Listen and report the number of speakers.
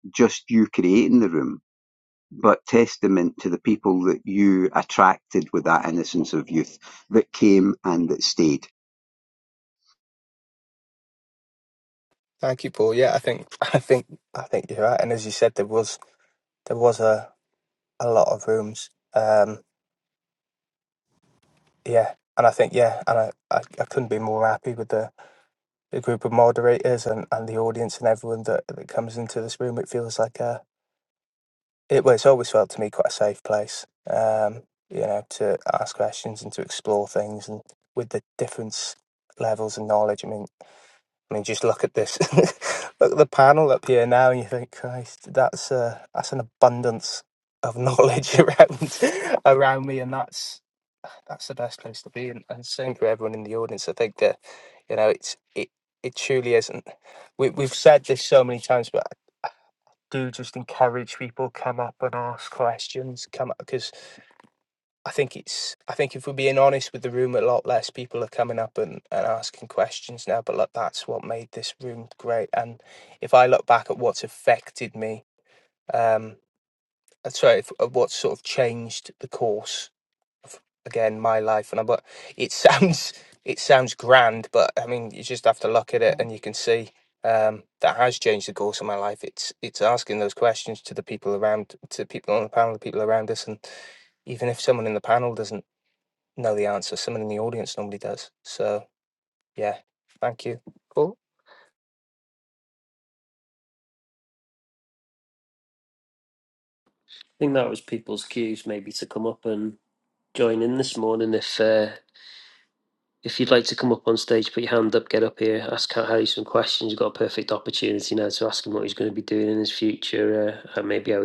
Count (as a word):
three